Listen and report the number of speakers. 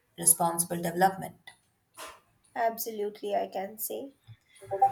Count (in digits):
2